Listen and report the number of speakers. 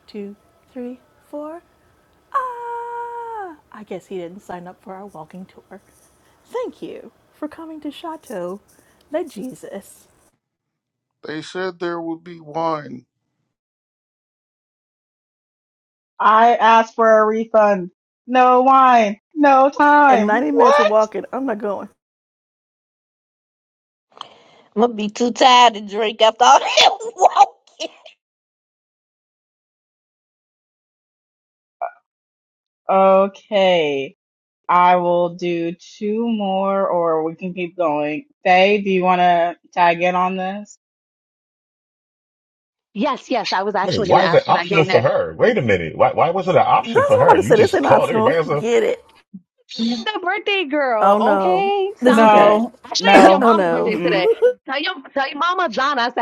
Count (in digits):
6